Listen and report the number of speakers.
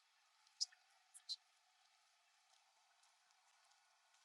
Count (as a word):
zero